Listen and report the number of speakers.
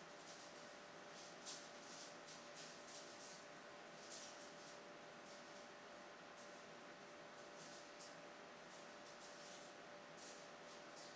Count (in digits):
0